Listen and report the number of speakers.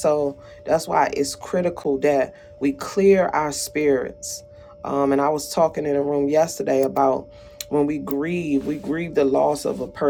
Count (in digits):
1